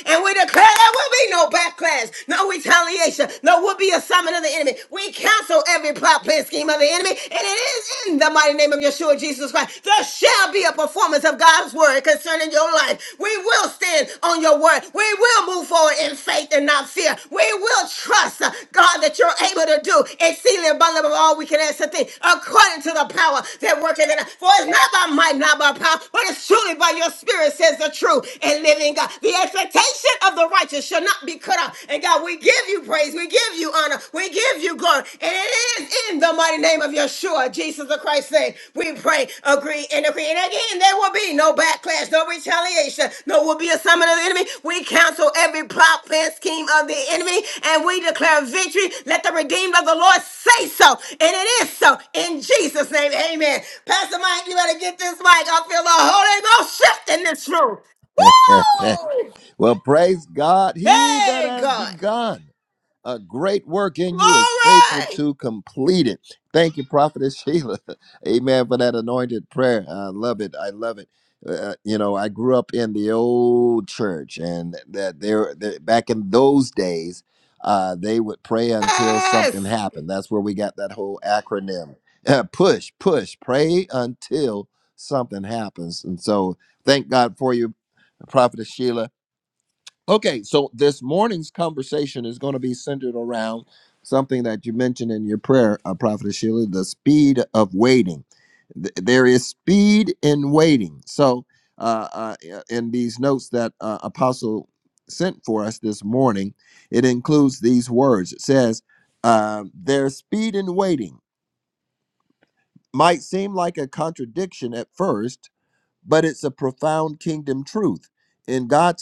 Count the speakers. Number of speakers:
2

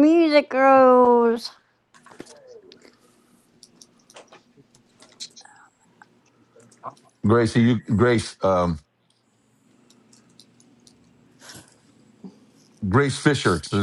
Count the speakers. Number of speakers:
2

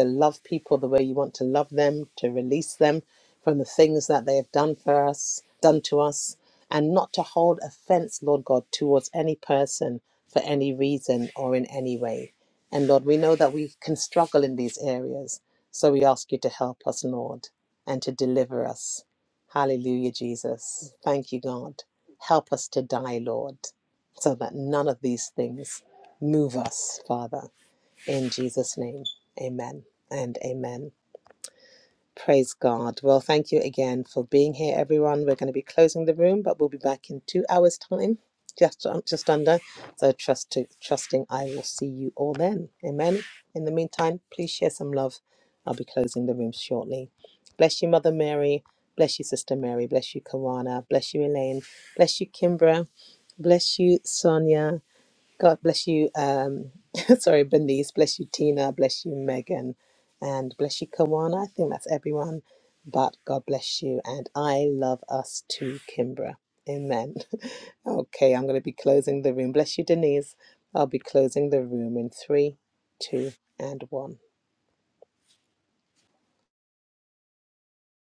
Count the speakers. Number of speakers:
1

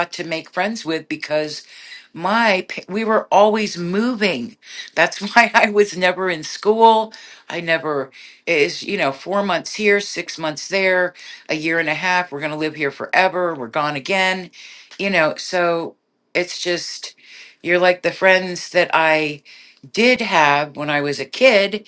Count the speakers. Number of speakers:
1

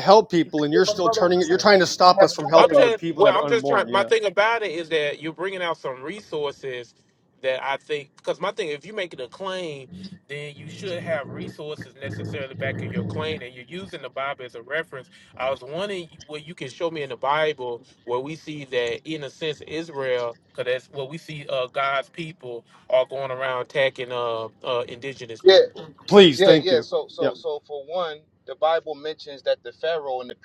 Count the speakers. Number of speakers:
3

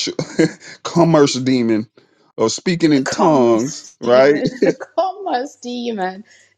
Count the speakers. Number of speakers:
2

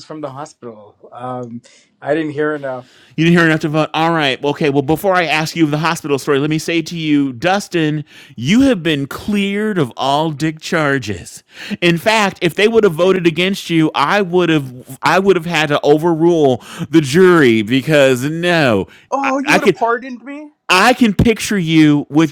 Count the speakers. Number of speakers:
3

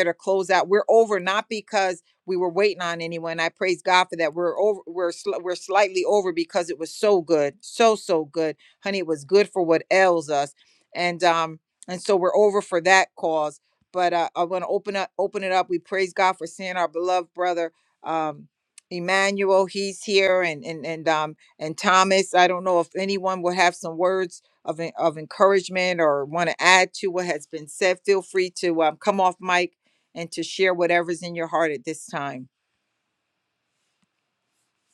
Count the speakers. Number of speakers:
1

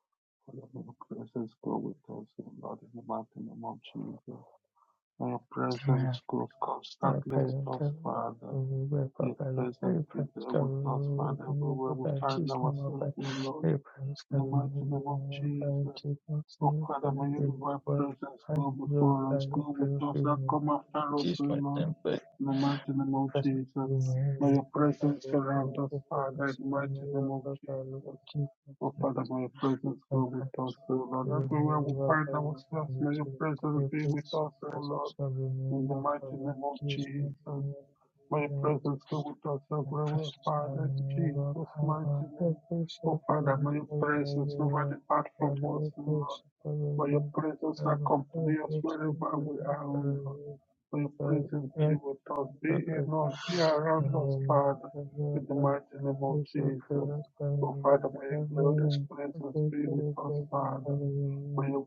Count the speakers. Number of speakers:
2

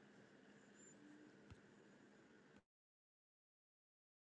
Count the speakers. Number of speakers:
0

